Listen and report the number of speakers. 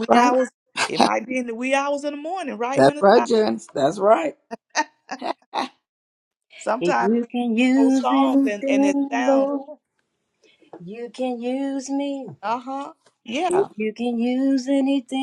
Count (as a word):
three